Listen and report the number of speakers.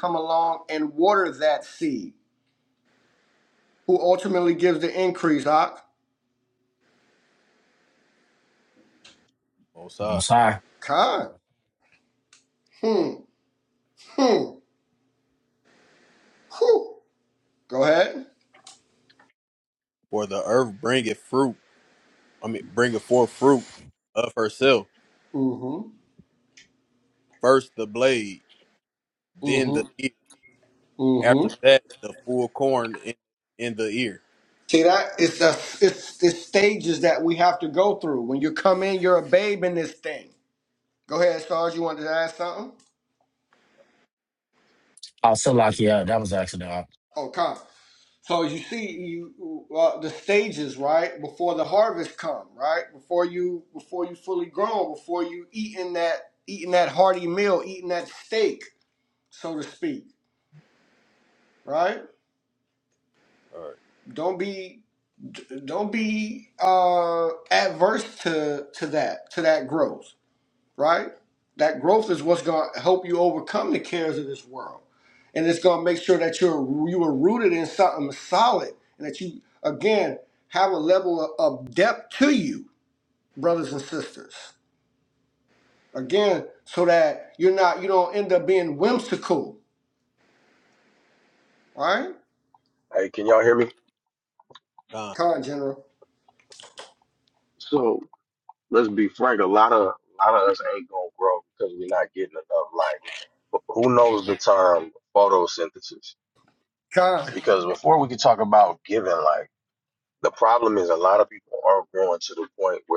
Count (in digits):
4